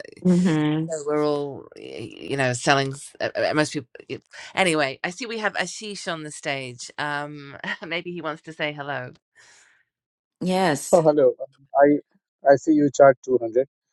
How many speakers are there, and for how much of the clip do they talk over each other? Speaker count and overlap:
3, about 1%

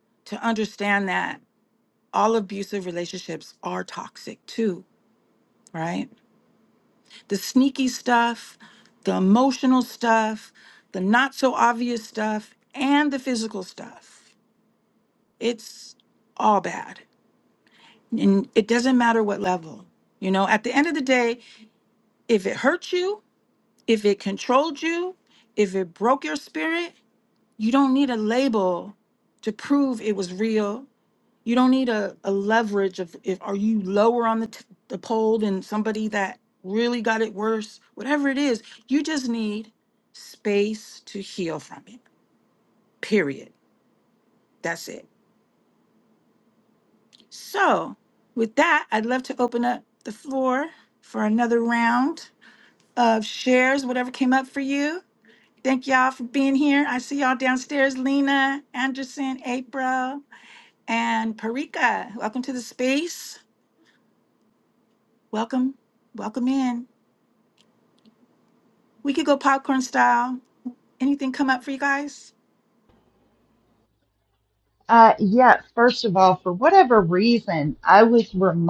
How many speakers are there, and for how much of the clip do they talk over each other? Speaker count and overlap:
2, no overlap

